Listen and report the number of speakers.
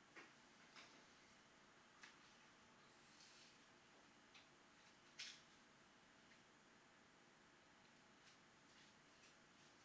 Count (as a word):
zero